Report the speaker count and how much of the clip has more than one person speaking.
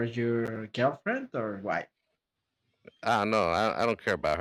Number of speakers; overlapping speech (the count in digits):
2, no overlap